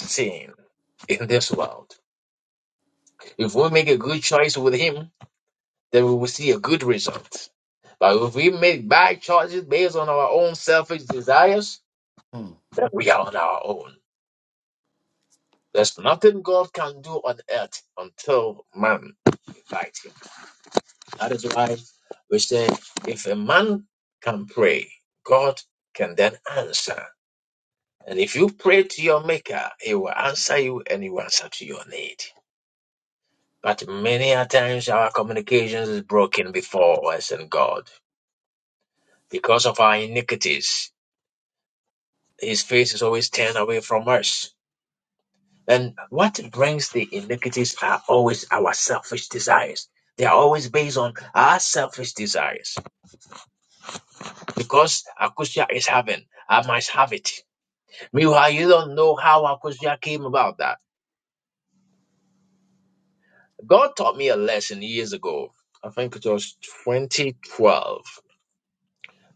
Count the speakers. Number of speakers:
one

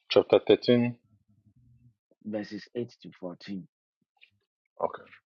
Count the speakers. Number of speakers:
two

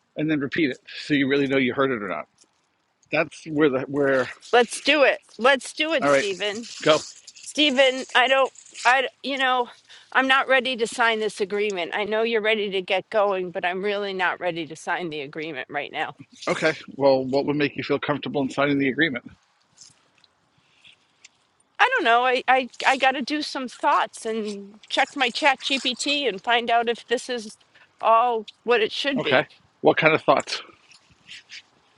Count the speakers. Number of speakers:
two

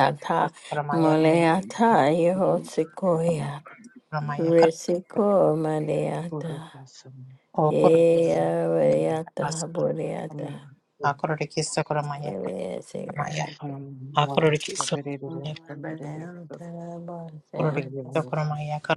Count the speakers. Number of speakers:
three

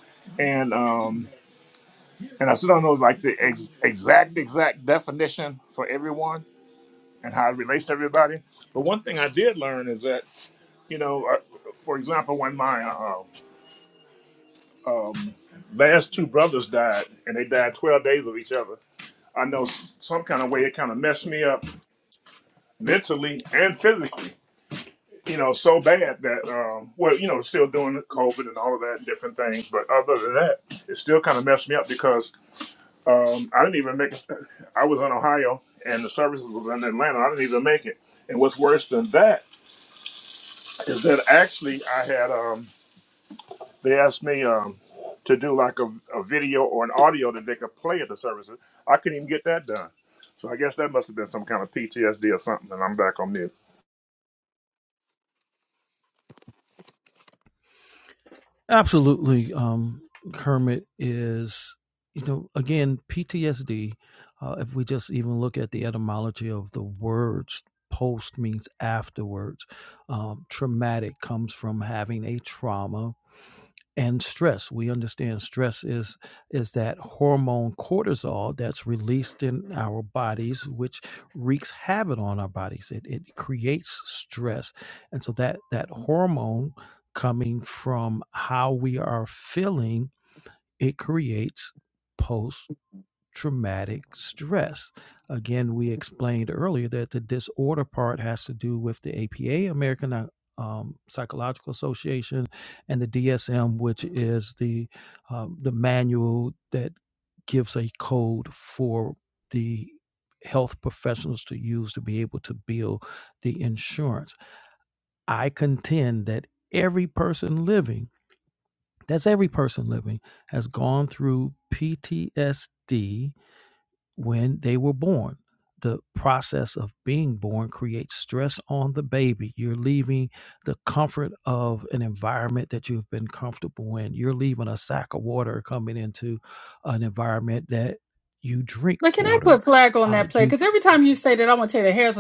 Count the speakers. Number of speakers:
three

